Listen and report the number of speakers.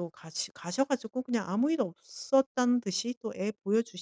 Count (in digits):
1